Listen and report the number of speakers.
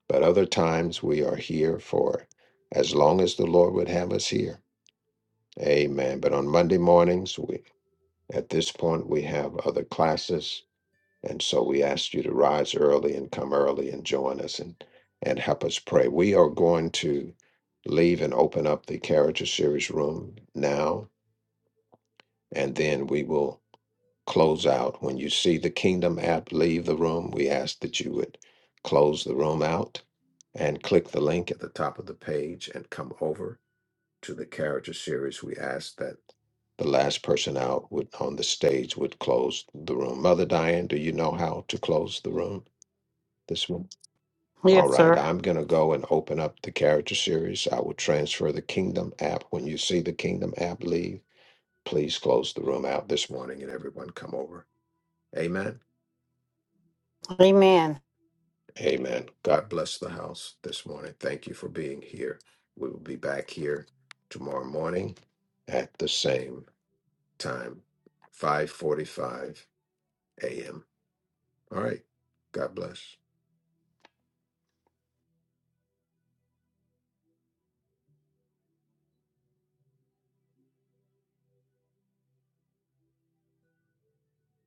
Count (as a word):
two